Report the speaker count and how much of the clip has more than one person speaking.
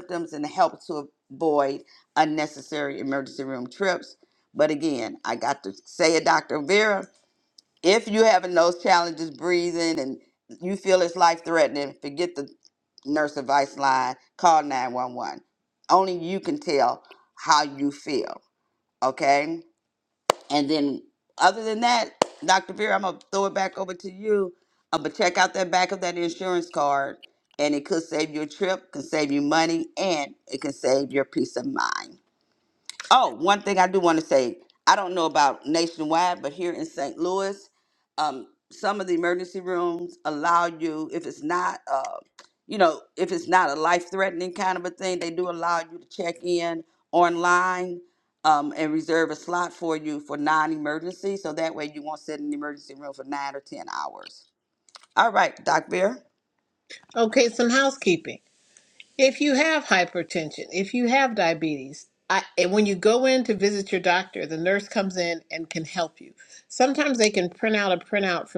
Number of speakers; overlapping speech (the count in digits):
2, no overlap